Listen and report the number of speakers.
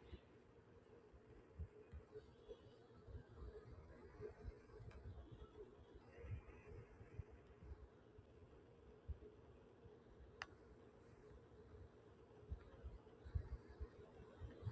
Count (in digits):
0